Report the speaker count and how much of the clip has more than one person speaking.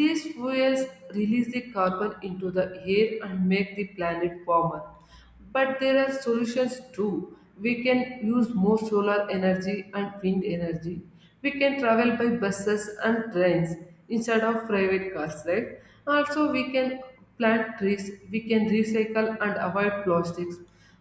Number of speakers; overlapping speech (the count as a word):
one, no overlap